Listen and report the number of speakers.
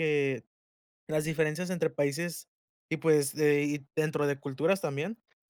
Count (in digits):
1